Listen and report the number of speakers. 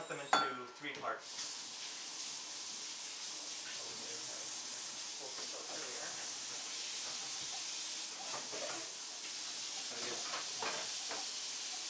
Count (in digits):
1